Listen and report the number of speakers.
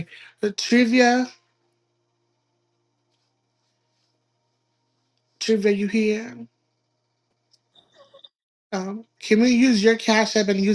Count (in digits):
1